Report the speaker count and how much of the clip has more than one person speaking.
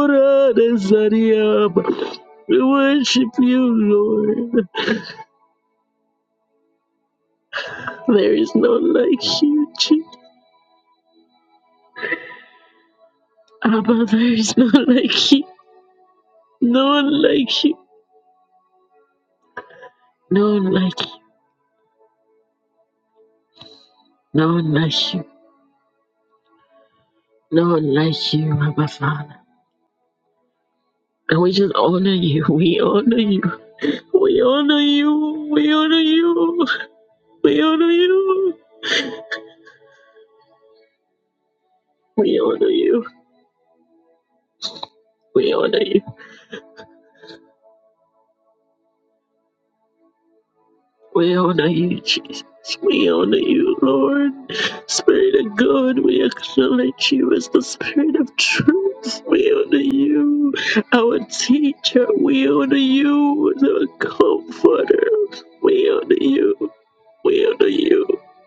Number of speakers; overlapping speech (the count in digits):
1, no overlap